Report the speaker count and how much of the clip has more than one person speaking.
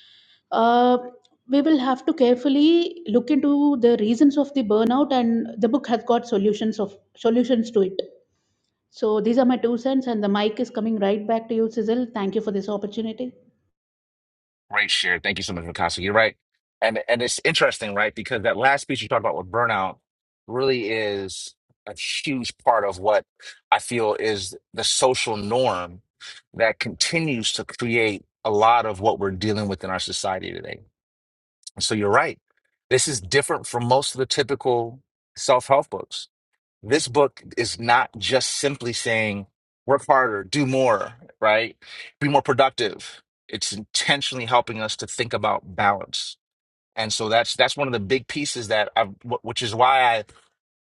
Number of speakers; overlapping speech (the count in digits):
2, no overlap